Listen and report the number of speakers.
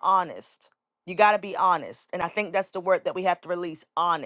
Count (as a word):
one